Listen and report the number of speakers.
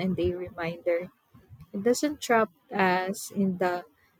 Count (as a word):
one